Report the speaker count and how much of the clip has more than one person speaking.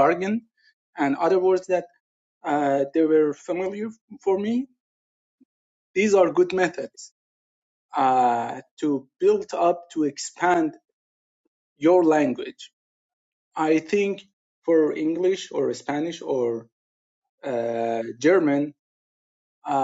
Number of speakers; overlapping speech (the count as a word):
one, no overlap